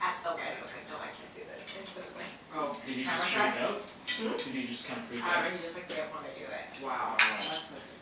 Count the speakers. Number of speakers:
3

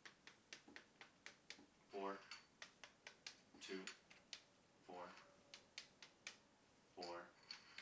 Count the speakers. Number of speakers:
1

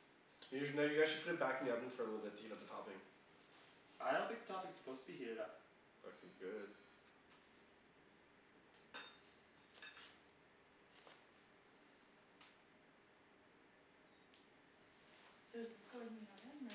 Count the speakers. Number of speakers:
3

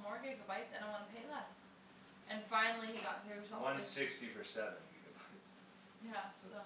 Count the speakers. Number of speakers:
2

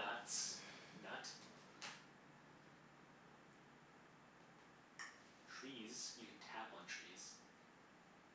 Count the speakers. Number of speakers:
1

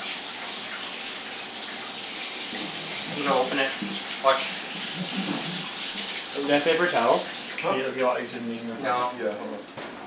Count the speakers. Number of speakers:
3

